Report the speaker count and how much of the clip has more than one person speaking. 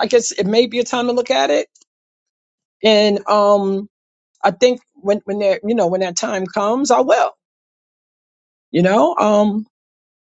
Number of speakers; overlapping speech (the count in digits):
1, no overlap